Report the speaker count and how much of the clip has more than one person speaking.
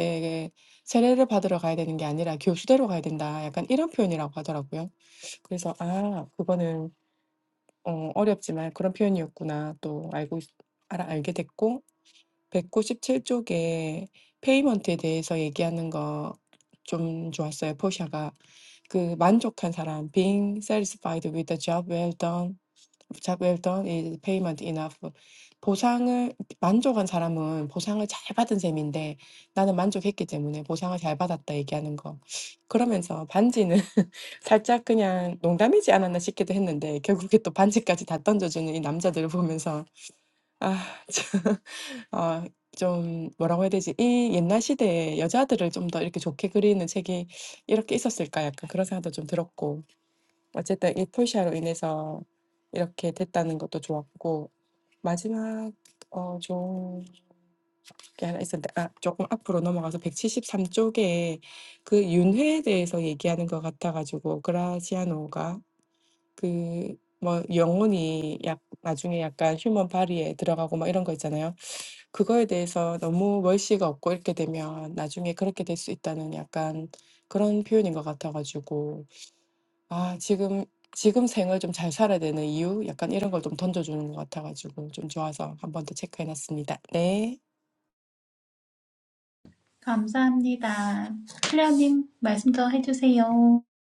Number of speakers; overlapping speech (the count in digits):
2, no overlap